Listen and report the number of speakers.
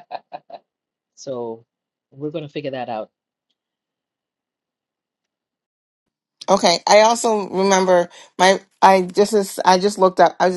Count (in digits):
2